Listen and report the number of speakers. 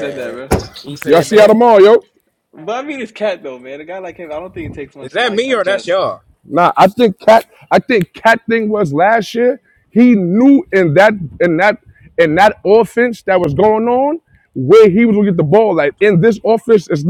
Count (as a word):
three